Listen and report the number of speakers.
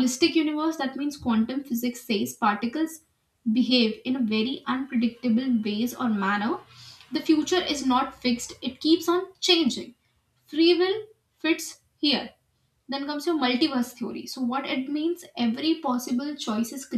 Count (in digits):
1